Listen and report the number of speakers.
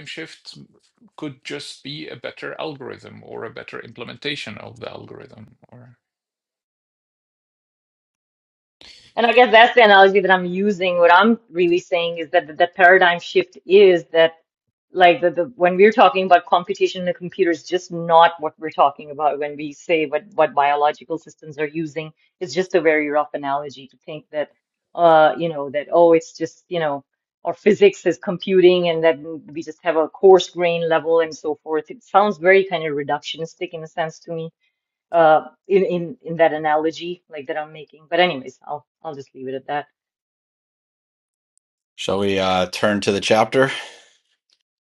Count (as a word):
three